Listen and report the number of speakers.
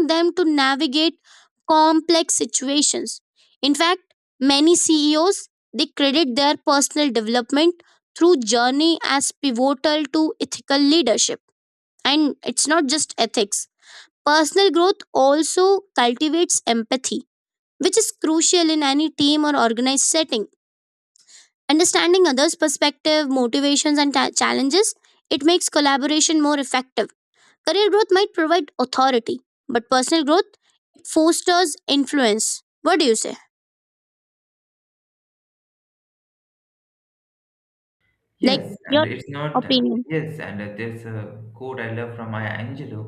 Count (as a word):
two